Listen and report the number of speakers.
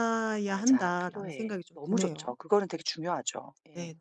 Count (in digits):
2